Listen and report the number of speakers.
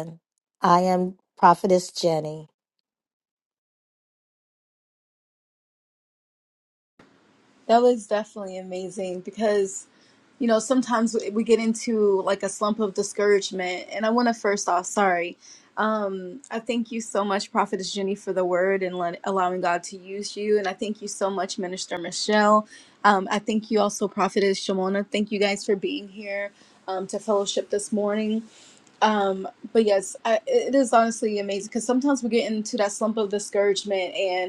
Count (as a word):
two